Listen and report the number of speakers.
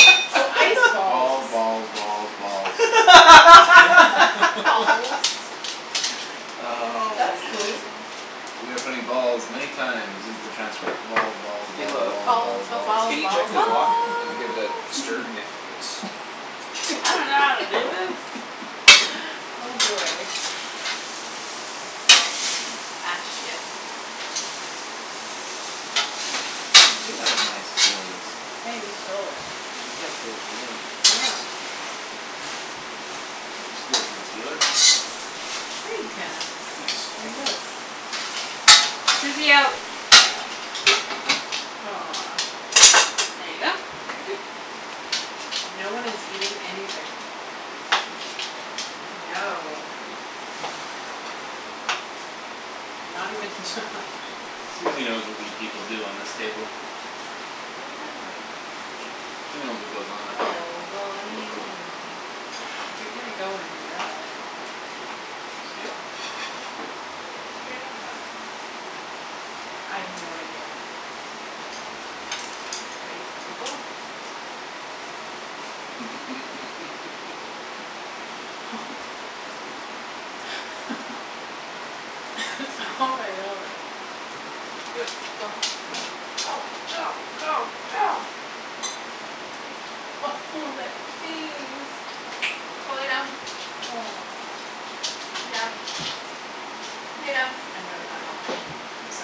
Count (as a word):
four